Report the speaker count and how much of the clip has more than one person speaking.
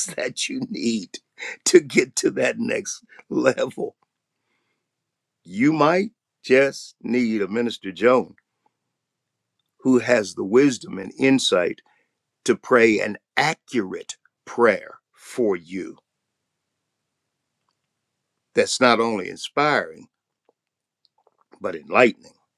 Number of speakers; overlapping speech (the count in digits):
1, no overlap